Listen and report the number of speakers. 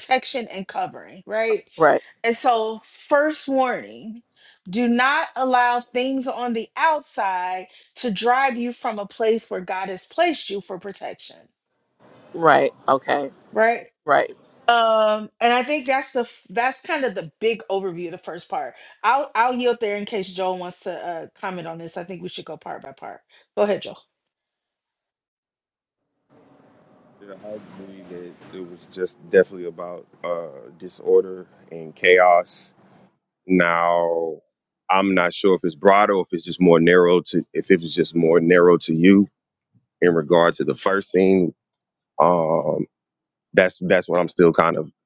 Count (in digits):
3